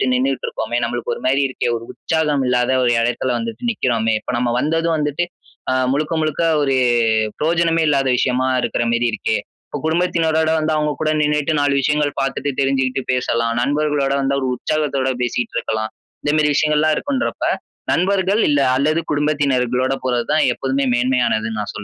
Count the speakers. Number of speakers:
one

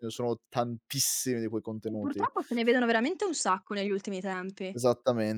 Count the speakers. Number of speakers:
two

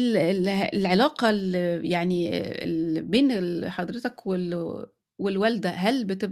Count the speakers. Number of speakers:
one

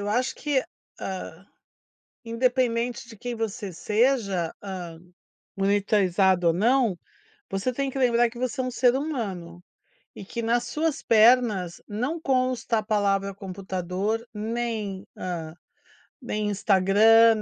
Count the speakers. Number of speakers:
one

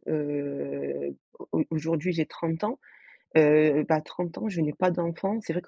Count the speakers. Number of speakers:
one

